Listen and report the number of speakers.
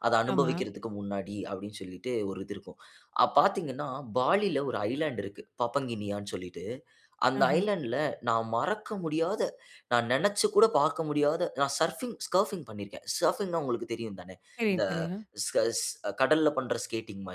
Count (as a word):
two